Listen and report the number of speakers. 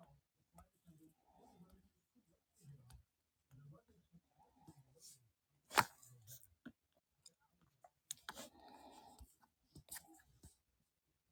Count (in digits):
0